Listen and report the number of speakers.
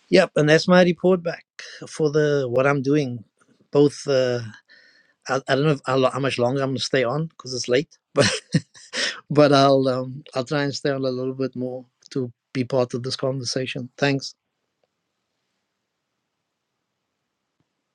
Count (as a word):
one